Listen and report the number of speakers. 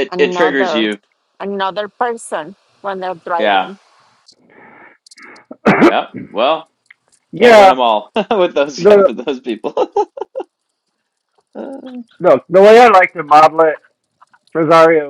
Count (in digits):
3